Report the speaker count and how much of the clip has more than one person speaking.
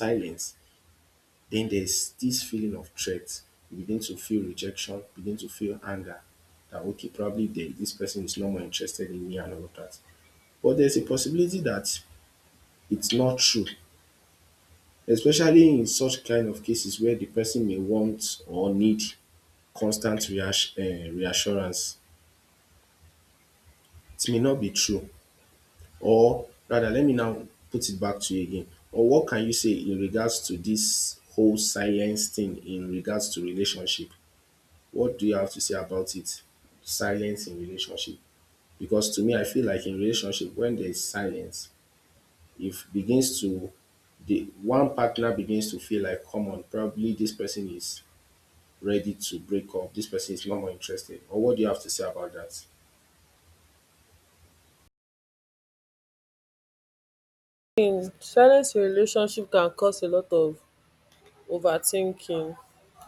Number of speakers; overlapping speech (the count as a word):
two, no overlap